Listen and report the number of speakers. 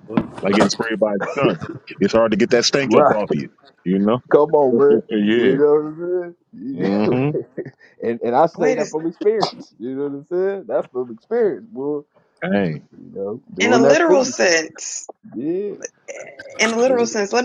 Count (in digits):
3